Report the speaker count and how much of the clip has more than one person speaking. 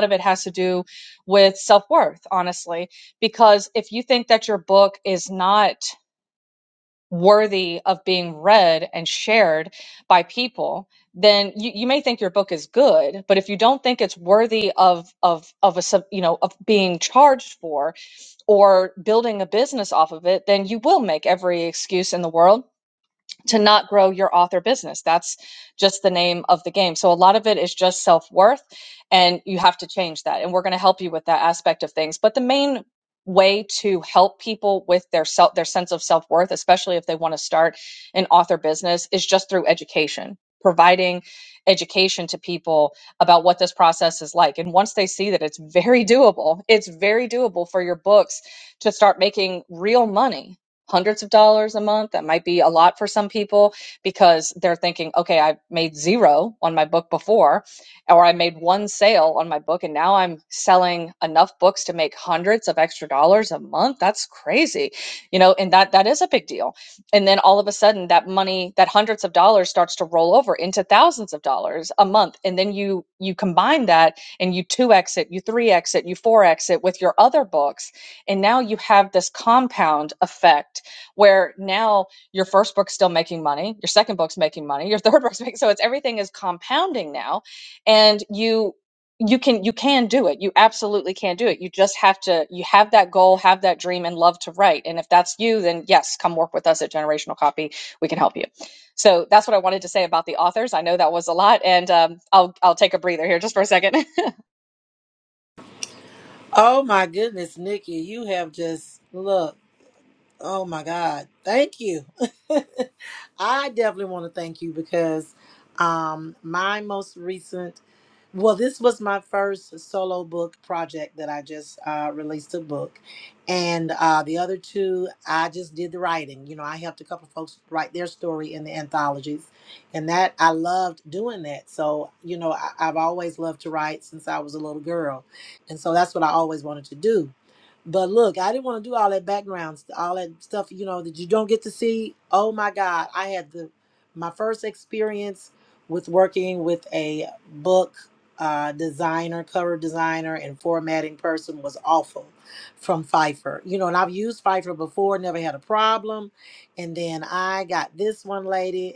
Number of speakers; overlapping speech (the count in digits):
2, no overlap